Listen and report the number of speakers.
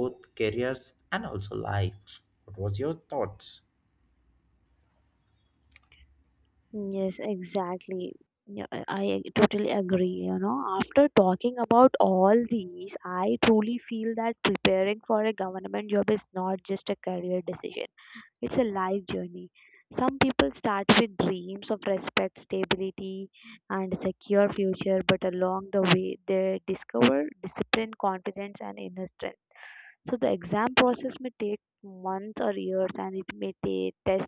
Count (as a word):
two